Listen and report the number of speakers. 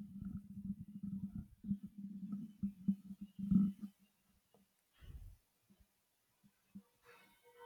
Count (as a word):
zero